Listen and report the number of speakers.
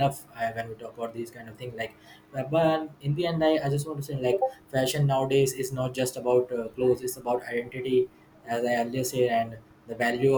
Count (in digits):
1